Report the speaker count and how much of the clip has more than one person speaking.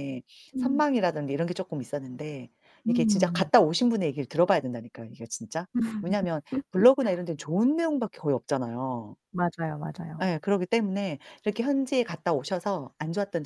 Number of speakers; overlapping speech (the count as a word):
two, about 6%